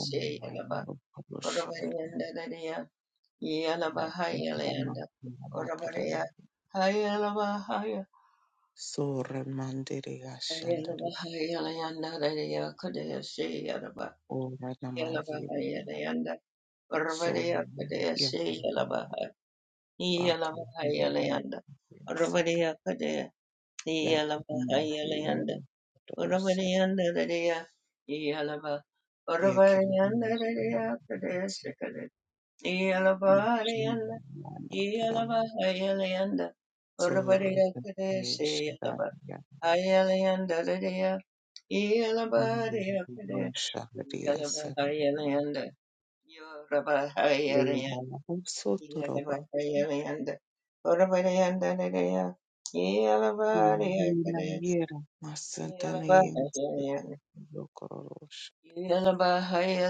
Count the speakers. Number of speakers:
2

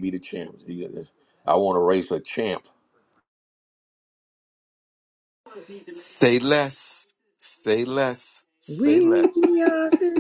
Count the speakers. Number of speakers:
3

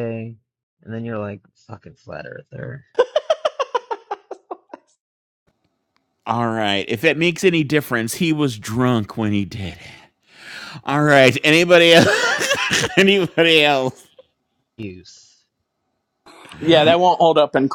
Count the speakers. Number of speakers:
3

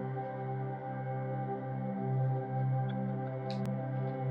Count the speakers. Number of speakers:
0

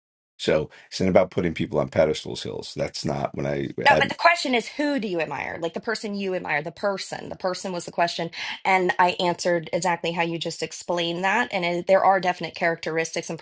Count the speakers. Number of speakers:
2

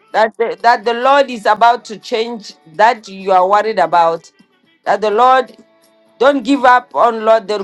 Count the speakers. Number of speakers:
1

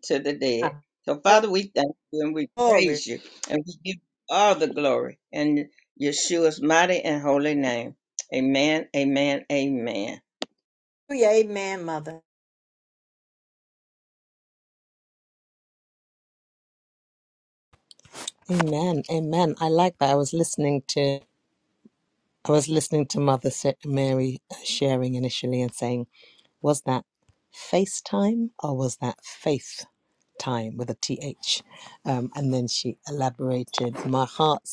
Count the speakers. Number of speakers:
3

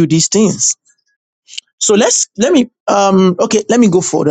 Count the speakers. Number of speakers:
1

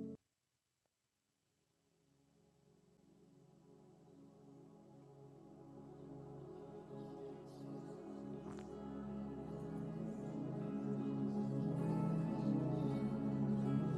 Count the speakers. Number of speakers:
0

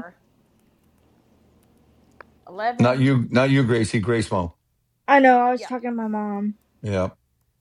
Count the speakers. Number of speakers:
3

